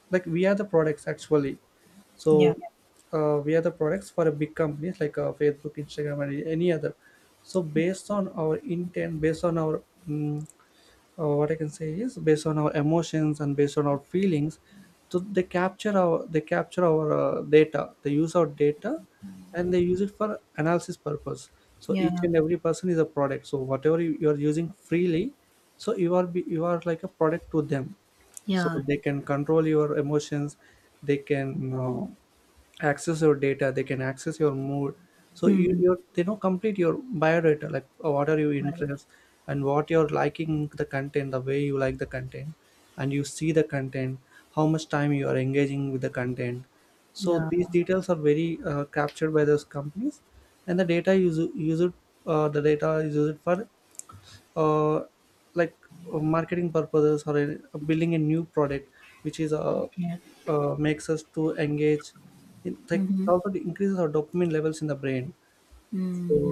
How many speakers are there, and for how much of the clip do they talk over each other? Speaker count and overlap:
two, about 4%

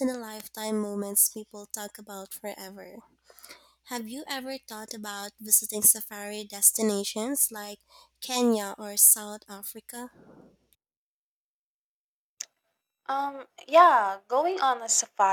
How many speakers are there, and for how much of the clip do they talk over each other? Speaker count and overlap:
two, no overlap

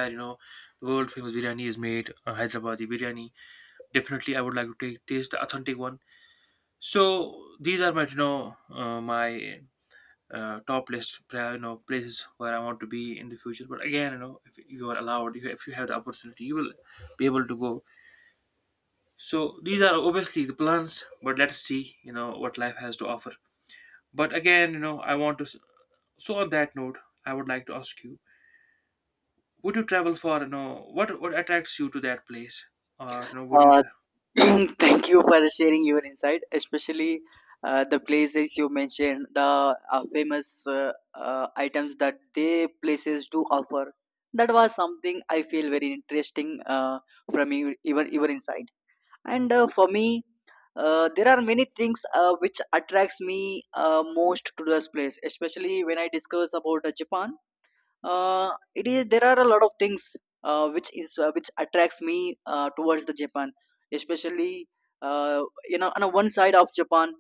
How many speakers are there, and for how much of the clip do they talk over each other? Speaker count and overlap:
two, about 1%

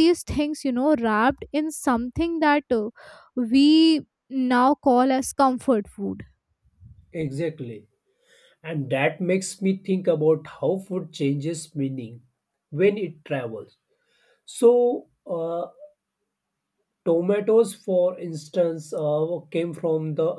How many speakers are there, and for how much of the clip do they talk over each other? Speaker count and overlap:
two, no overlap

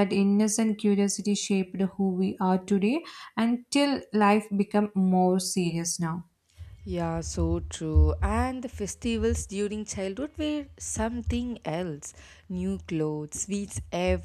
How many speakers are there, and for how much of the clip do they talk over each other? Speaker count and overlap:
two, no overlap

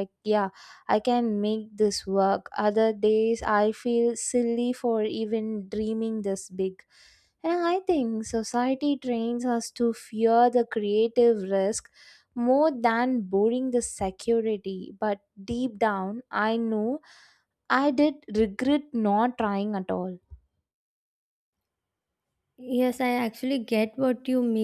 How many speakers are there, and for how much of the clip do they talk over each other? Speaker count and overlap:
two, no overlap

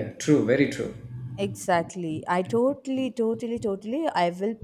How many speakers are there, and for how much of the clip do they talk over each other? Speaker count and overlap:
two, no overlap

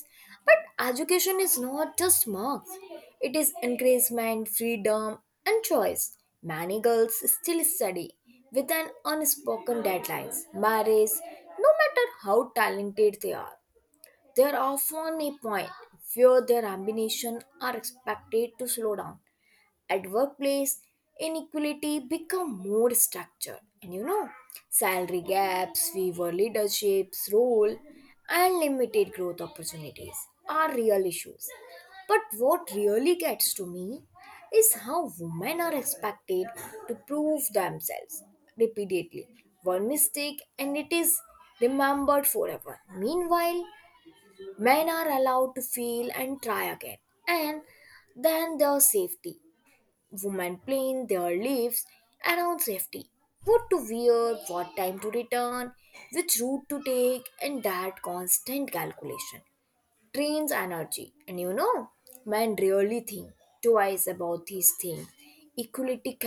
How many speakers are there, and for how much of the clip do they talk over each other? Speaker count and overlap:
one, no overlap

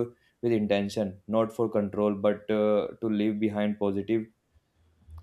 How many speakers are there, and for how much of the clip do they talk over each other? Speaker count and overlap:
one, no overlap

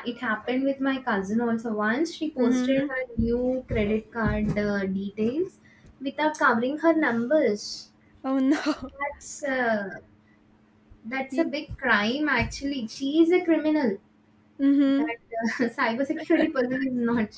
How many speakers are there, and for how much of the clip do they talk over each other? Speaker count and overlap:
two, about 4%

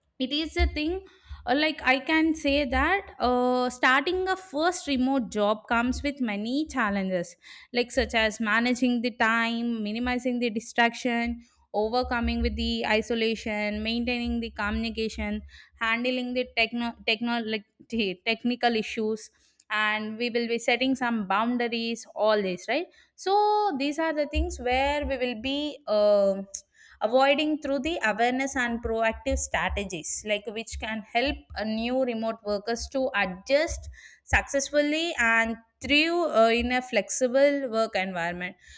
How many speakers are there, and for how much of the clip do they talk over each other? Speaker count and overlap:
one, no overlap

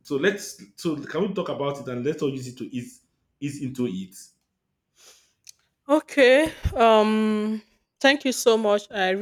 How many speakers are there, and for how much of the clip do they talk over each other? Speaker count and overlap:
two, no overlap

